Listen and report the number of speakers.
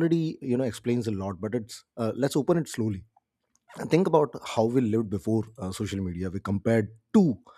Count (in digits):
1